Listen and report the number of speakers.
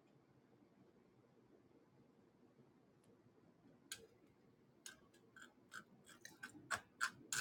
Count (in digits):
0